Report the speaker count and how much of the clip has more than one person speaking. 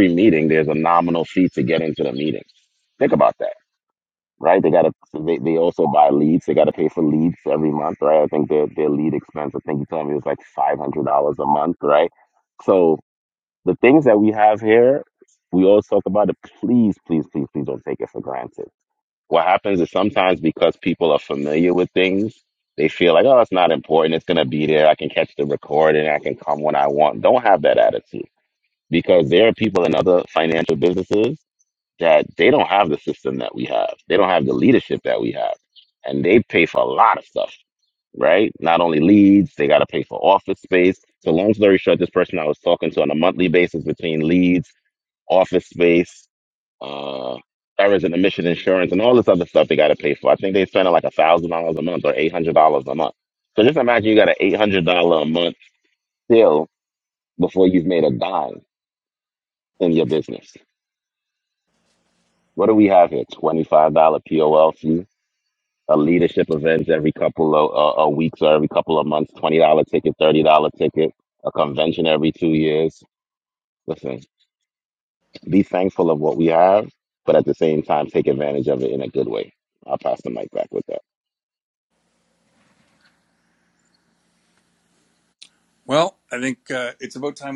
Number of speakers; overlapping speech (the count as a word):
two, no overlap